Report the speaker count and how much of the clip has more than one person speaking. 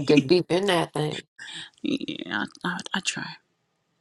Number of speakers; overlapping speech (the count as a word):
two, no overlap